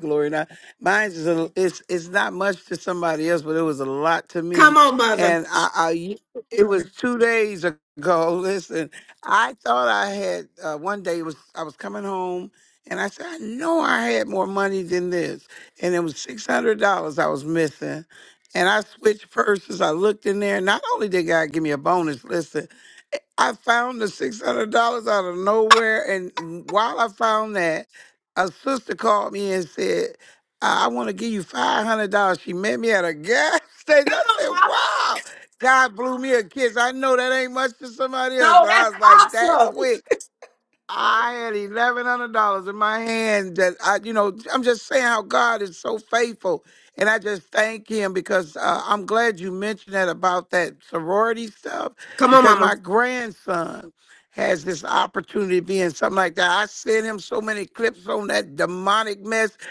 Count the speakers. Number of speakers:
2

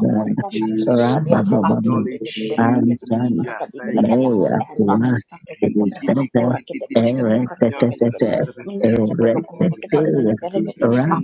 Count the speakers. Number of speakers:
3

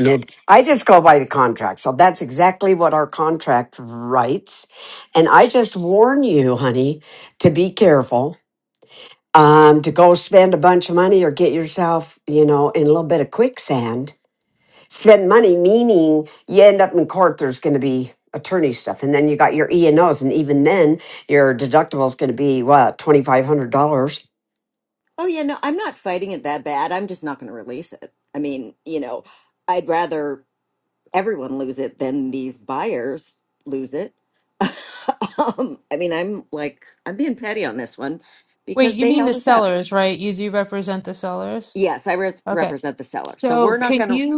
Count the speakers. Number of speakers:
3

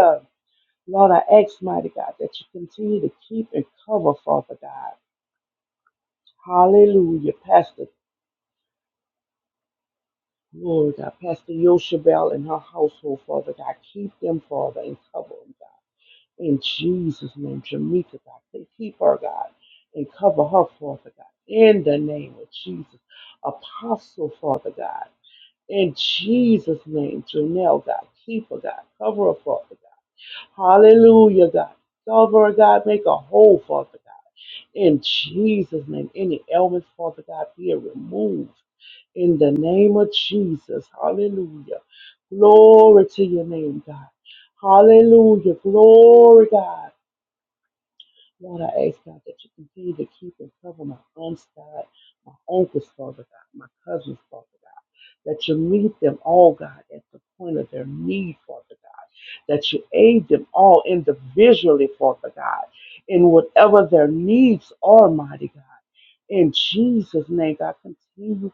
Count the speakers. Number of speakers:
1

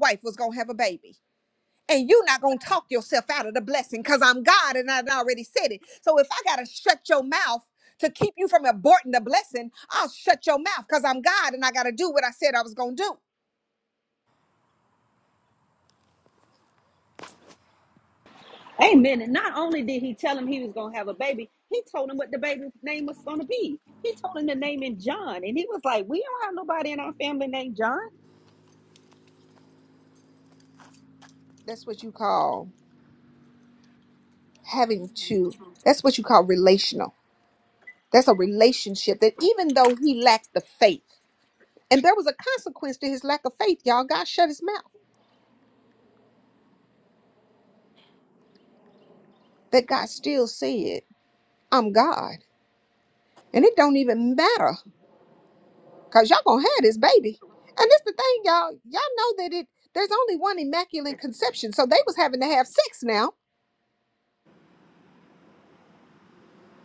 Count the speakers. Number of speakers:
2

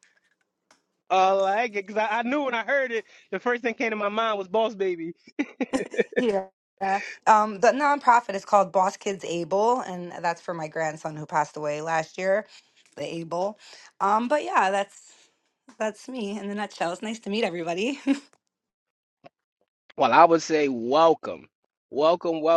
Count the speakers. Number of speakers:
2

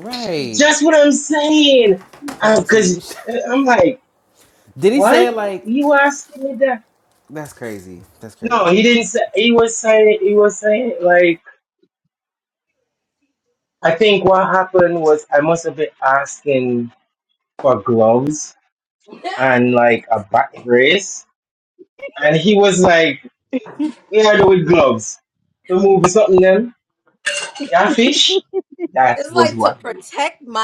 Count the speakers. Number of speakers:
3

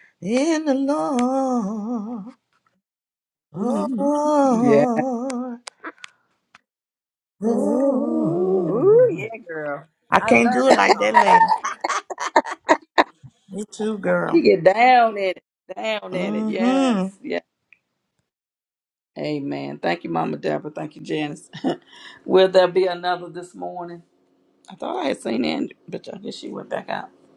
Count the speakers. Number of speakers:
3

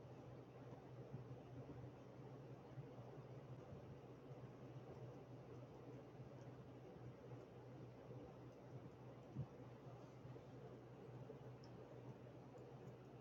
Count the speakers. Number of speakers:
0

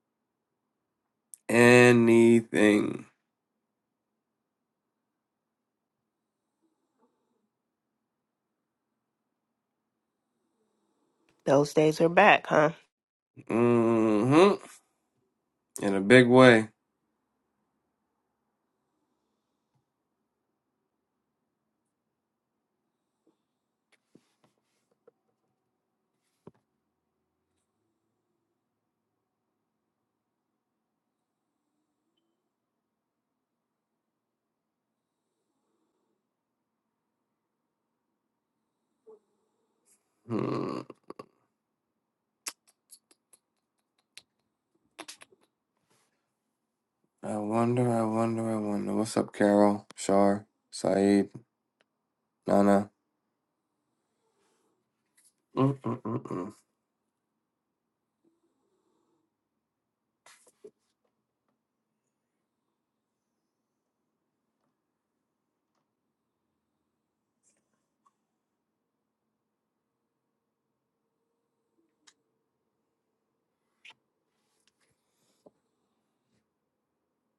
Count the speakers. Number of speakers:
2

